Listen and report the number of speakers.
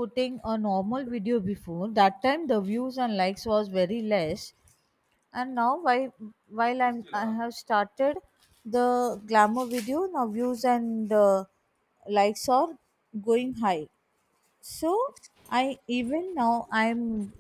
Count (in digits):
1